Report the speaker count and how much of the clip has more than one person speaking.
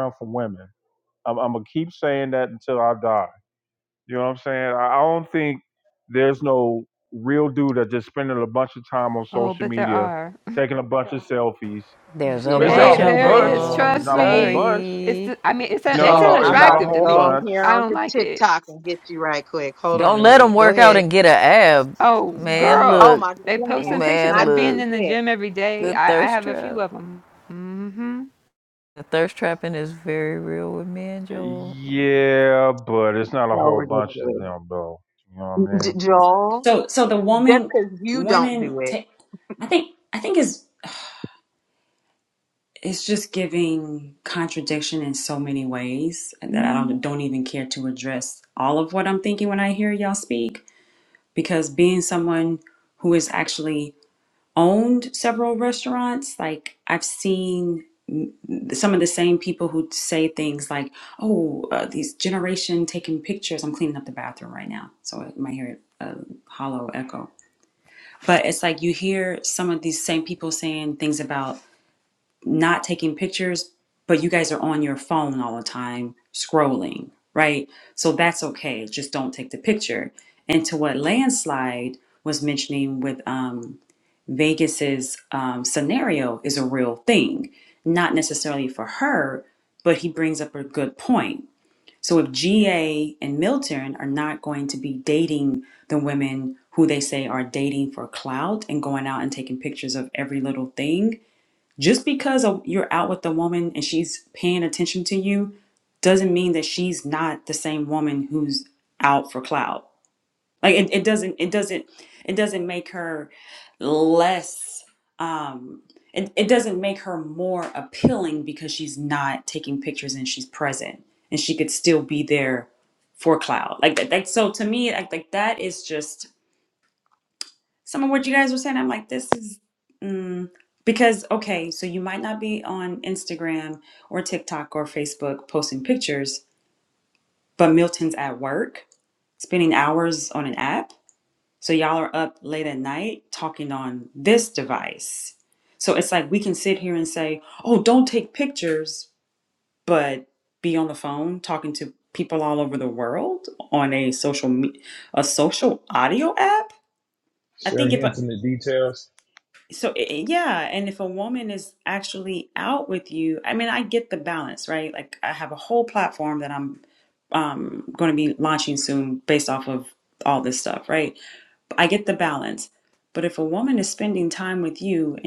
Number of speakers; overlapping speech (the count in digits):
6, about 8%